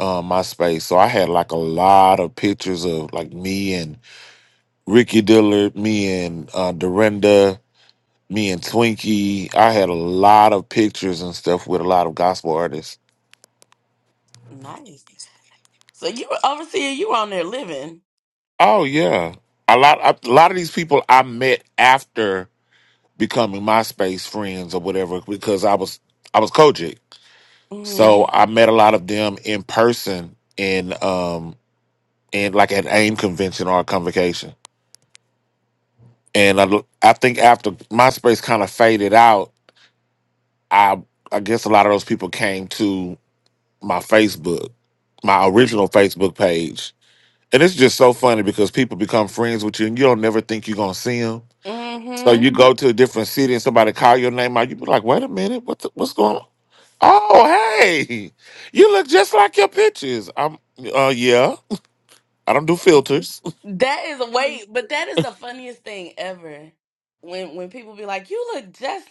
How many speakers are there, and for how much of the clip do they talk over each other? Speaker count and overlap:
two, under 1%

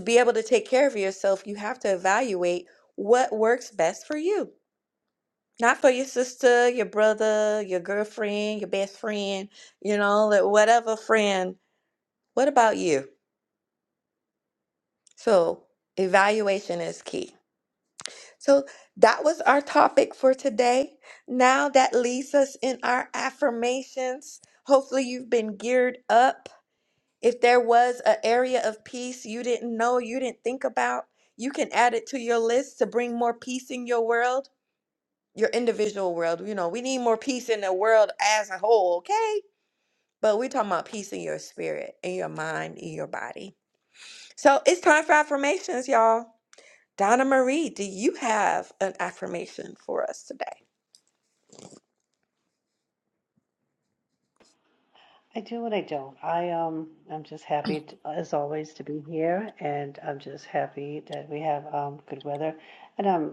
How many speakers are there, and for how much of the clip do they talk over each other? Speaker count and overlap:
two, no overlap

